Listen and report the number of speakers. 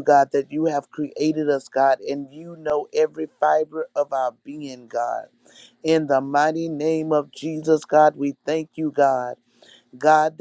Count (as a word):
one